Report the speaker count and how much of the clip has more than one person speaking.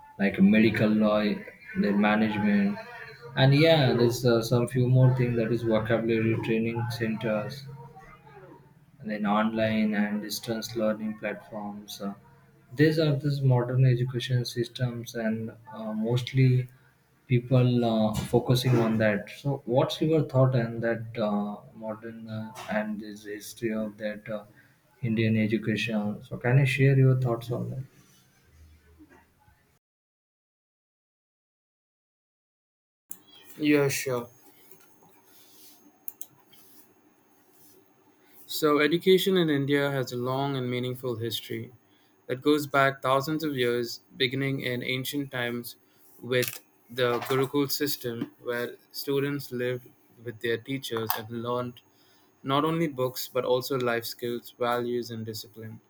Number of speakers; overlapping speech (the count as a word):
two, no overlap